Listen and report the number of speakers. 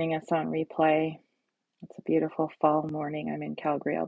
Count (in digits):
1